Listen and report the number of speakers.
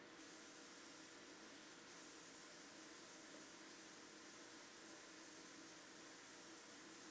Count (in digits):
0